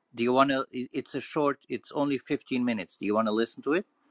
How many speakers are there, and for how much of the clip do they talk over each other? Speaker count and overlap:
one, no overlap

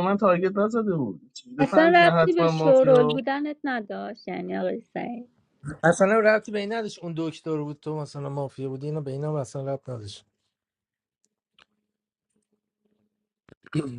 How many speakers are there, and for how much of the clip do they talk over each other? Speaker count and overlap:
three, about 11%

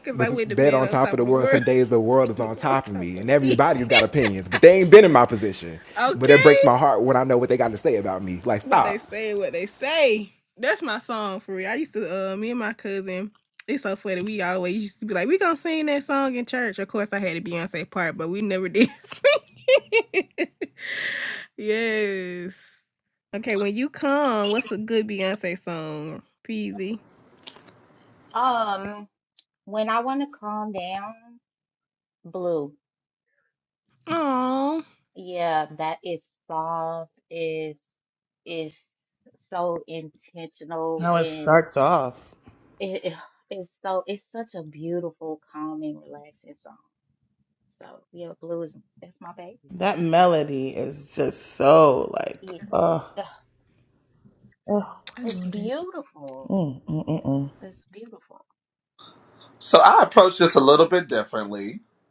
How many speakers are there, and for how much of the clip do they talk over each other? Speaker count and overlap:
five, about 8%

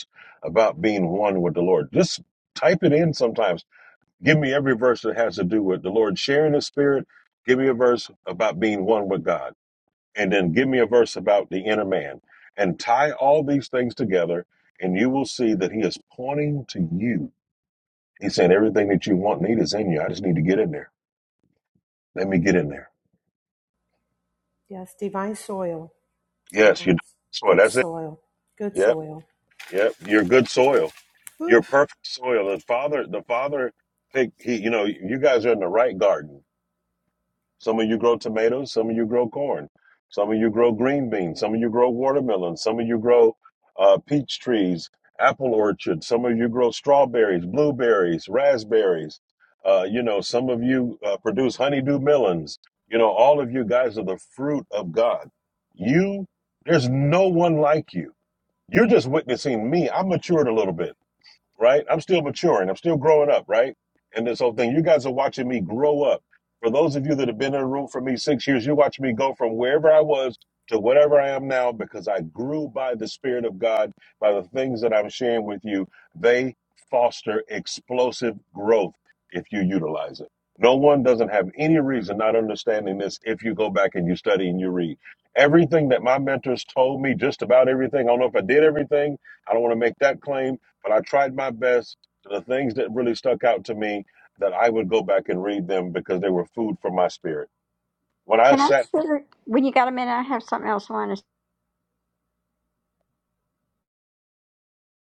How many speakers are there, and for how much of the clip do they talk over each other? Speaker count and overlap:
three, about 2%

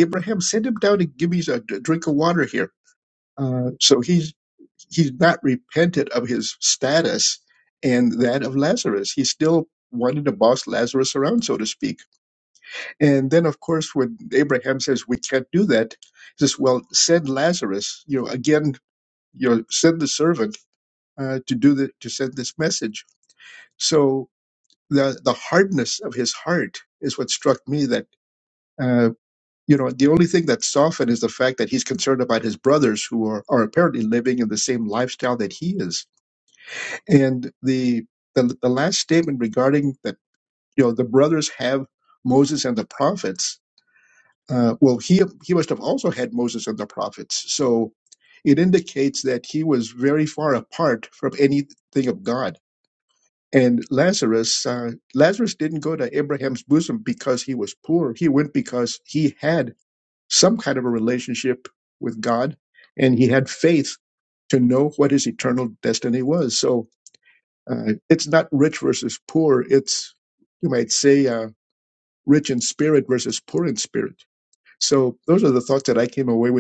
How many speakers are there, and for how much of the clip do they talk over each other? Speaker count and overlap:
one, no overlap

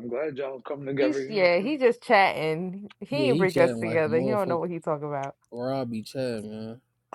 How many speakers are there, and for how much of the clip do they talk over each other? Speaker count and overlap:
three, about 30%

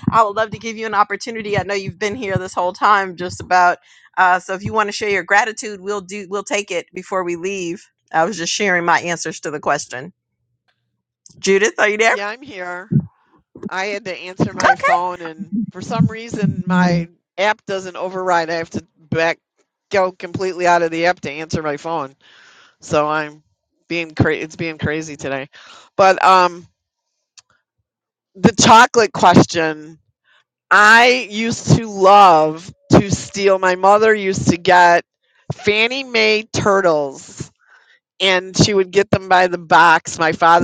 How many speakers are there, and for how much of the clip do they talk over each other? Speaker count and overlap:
two, about 1%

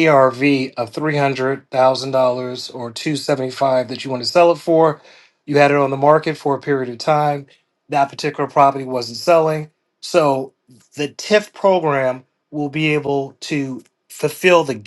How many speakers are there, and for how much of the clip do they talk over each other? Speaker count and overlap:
one, no overlap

